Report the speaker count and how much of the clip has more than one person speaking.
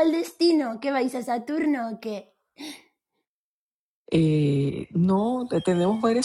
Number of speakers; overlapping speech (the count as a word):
two, no overlap